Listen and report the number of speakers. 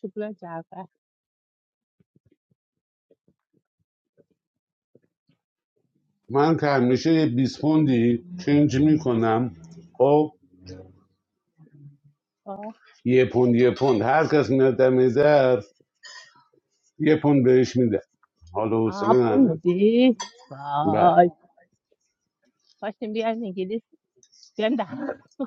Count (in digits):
2